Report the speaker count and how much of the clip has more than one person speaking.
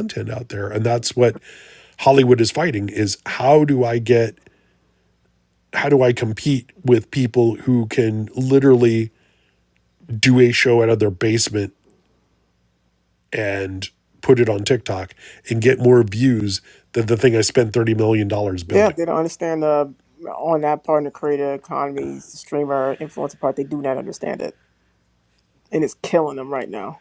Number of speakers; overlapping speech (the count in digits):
2, about 1%